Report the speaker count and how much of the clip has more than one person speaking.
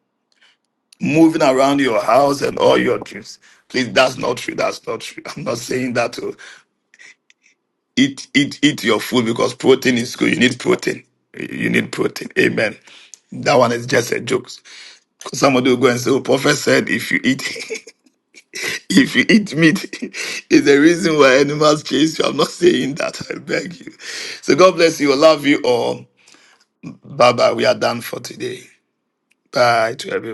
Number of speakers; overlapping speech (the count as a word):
one, no overlap